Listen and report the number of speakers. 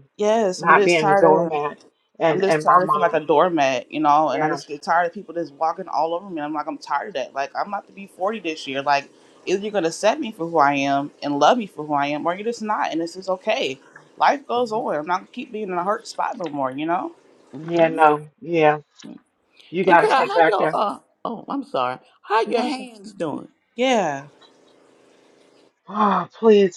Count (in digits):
3